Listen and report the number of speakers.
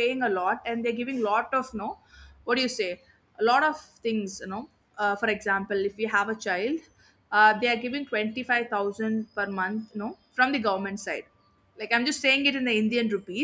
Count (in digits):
1